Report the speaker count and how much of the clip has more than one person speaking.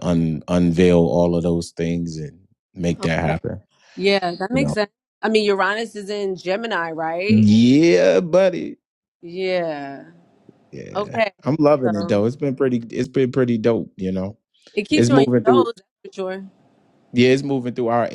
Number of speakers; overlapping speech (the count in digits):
2, about 10%